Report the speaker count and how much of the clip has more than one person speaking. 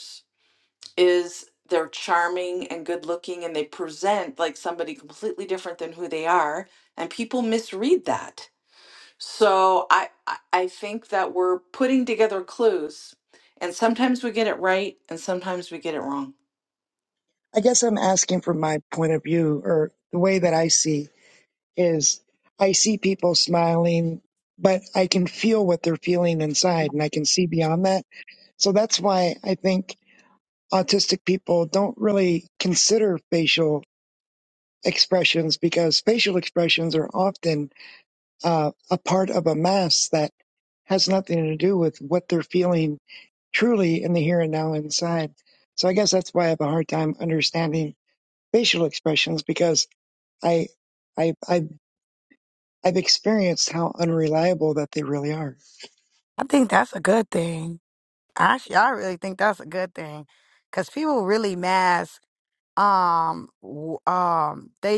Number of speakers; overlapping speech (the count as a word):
three, no overlap